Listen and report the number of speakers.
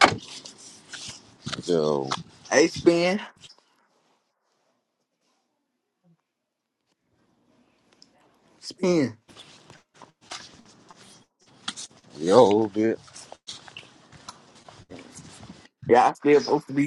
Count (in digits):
2